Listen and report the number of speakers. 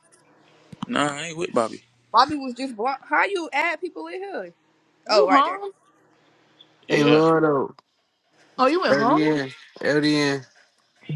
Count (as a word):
four